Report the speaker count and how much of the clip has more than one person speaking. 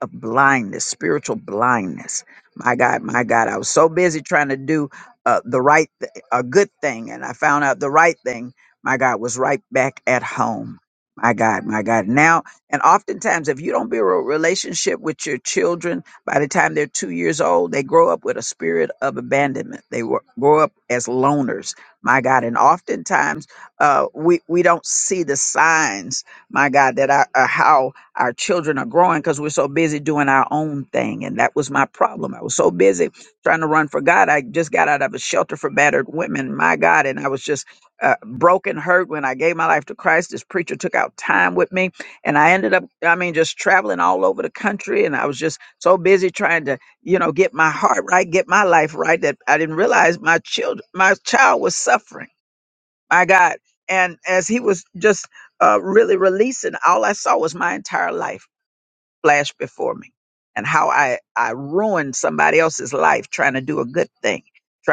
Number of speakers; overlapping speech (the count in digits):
1, no overlap